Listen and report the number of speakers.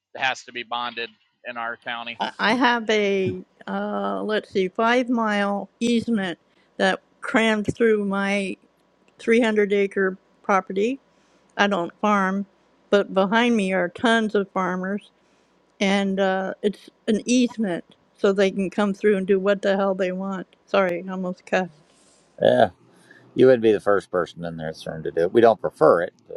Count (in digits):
3